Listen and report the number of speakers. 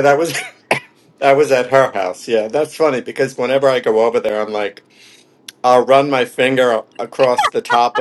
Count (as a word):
one